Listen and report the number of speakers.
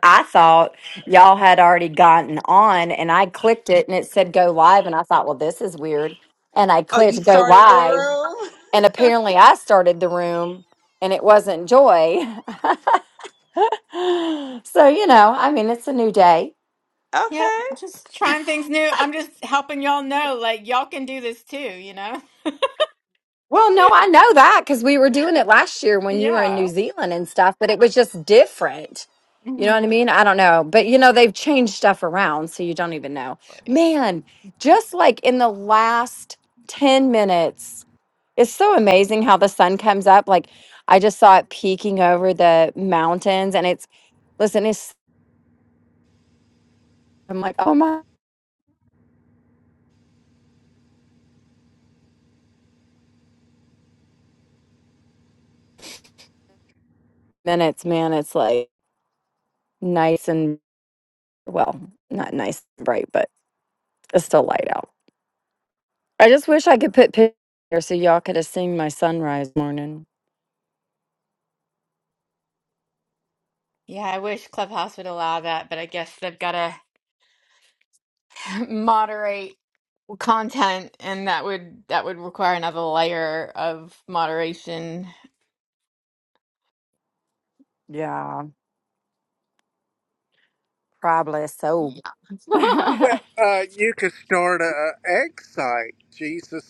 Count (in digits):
4